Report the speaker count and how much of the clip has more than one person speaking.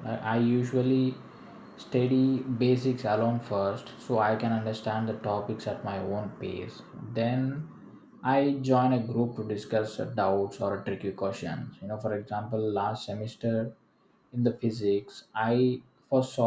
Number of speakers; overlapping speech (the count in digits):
1, no overlap